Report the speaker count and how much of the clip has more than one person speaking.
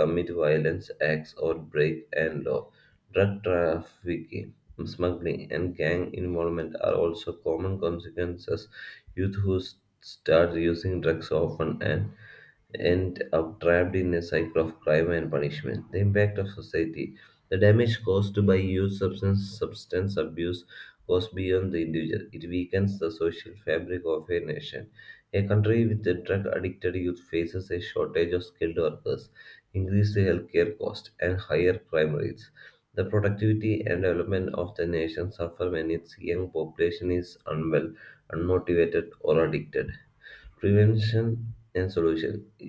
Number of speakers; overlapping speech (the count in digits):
1, no overlap